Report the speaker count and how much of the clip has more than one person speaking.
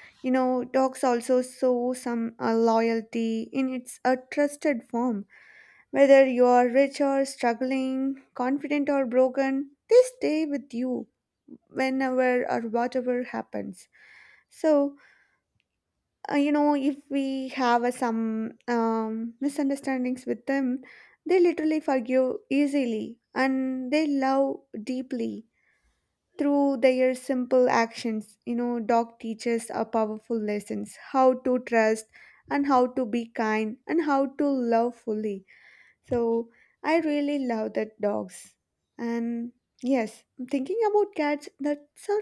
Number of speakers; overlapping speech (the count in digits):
1, no overlap